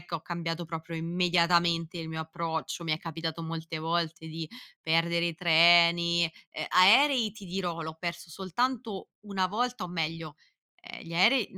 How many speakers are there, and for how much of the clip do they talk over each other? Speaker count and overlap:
one, no overlap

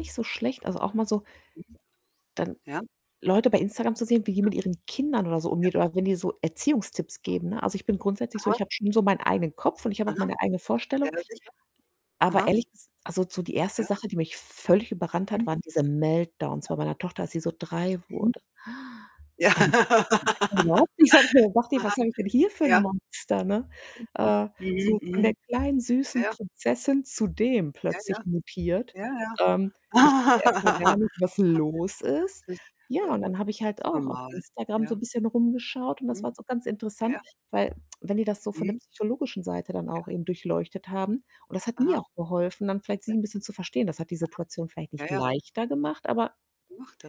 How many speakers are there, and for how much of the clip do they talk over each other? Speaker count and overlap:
two, about 11%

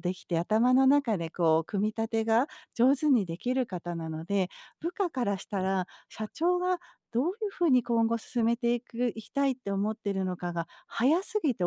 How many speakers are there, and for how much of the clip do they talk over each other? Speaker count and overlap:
one, no overlap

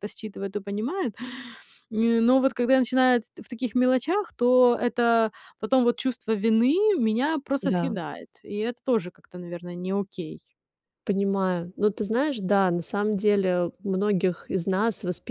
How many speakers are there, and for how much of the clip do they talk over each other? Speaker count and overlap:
two, about 2%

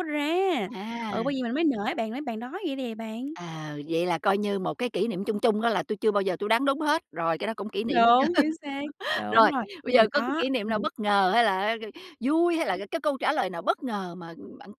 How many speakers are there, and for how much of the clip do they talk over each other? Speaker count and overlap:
two, about 16%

